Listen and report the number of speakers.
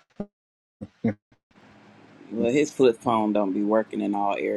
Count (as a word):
one